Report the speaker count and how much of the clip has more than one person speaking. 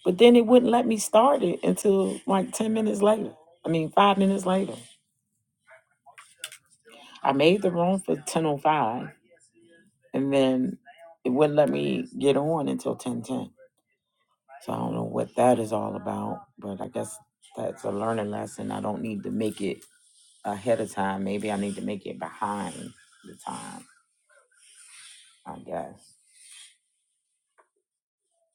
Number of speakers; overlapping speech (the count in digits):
1, no overlap